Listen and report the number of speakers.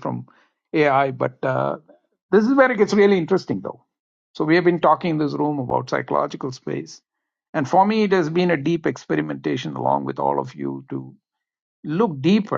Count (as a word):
one